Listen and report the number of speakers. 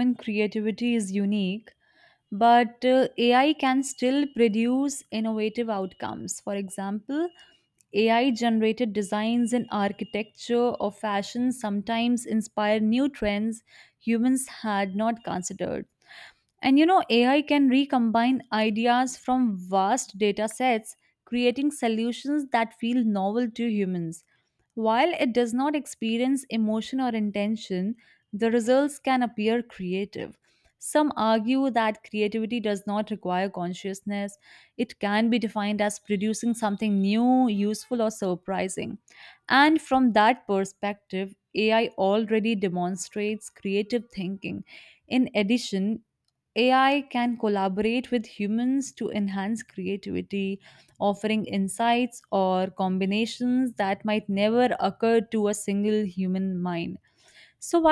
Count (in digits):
1